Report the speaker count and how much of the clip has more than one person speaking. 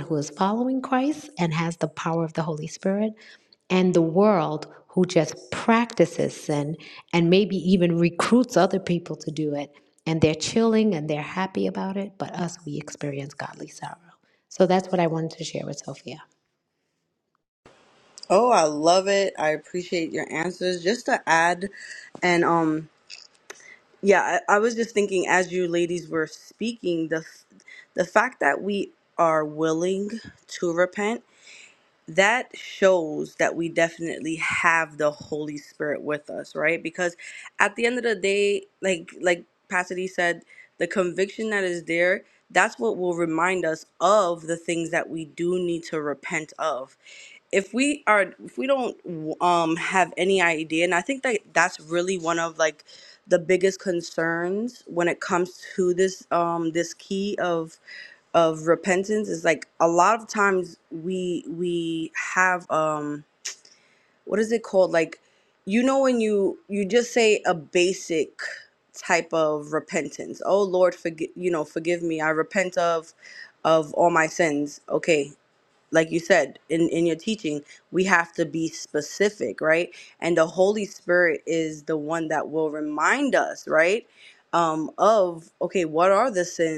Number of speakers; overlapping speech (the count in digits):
2, no overlap